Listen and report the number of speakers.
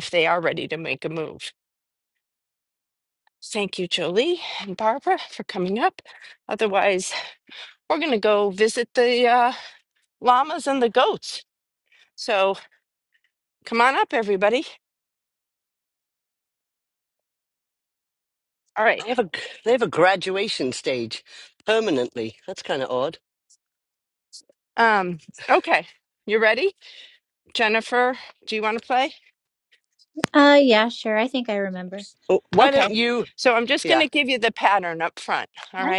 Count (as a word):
three